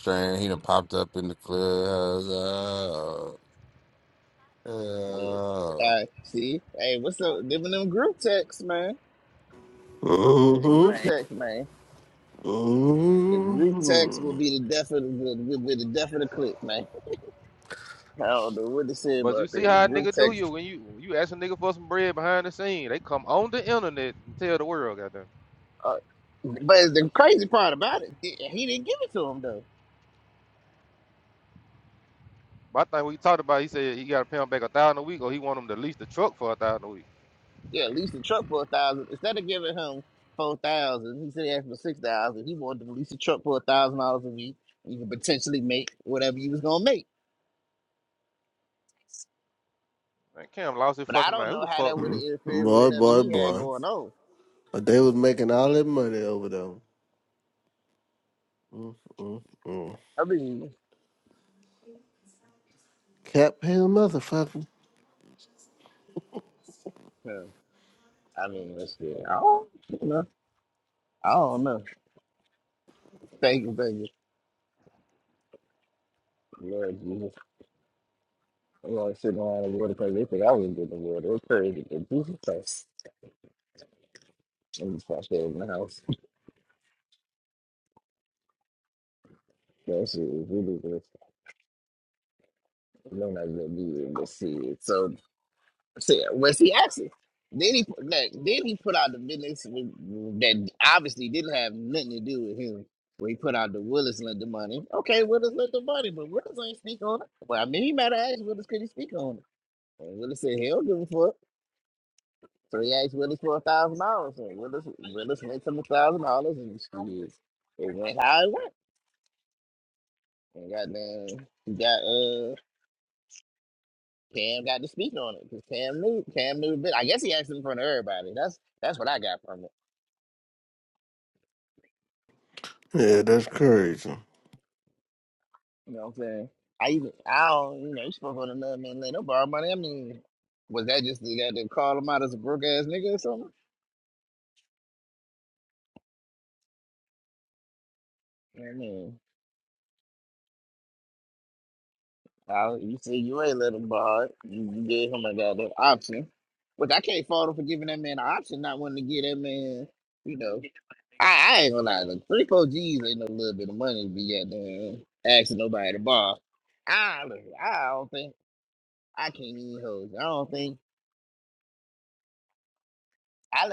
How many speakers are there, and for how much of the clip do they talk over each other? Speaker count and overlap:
four, about 2%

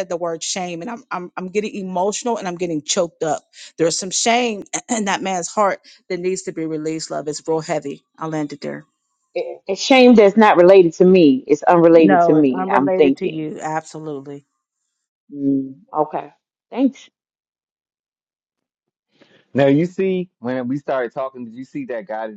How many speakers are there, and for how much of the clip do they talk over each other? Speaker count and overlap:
three, about 6%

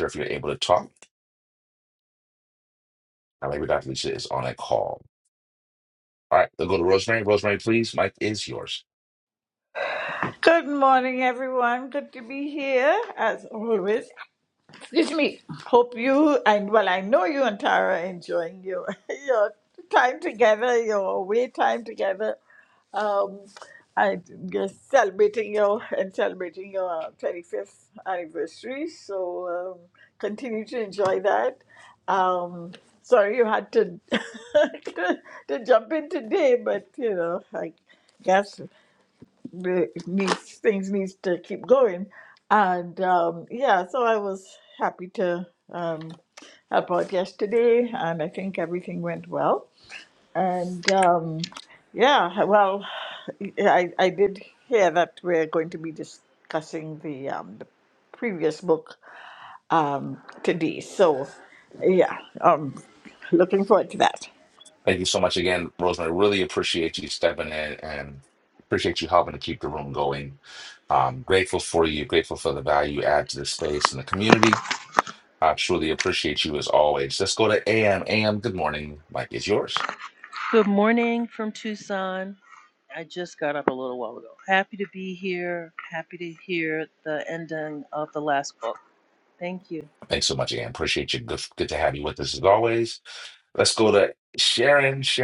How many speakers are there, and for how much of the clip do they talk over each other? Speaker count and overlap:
three, no overlap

